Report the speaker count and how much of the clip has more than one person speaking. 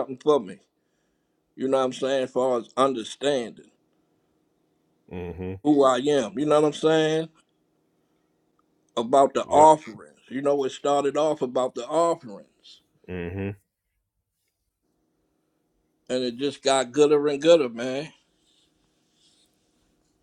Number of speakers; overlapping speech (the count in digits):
2, about 1%